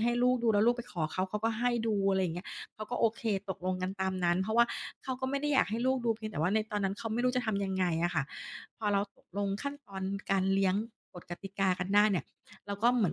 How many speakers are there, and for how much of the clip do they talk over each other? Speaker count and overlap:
one, no overlap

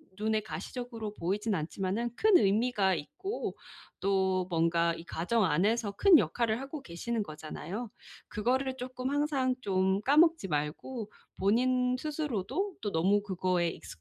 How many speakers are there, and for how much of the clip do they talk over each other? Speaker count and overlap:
one, no overlap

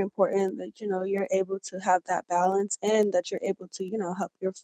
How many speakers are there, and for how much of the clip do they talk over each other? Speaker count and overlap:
one, no overlap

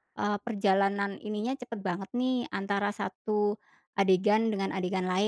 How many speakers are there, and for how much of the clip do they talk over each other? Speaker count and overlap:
one, no overlap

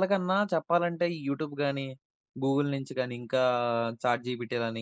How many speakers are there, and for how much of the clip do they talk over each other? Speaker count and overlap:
one, no overlap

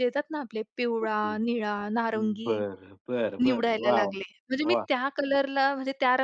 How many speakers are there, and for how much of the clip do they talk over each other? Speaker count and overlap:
two, about 24%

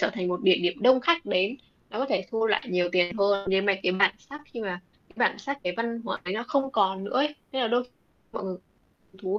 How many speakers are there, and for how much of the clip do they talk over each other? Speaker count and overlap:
one, no overlap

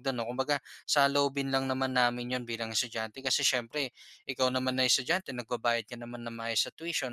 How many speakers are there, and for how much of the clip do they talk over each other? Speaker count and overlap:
one, no overlap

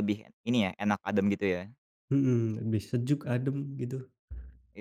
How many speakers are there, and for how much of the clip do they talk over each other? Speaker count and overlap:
two, no overlap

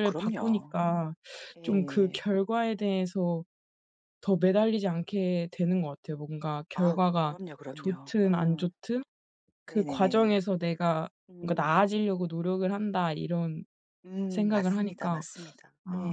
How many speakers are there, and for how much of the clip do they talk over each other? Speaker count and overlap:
two, about 30%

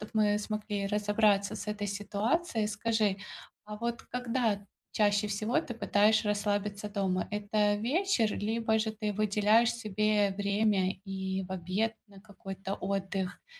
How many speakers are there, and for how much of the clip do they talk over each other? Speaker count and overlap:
one, no overlap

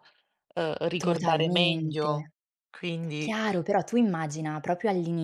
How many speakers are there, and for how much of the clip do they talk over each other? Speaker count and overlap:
two, about 21%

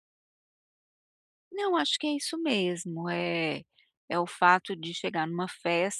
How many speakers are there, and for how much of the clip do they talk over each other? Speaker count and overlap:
one, no overlap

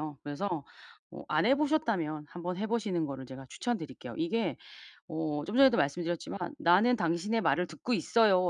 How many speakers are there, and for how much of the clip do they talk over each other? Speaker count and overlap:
one, no overlap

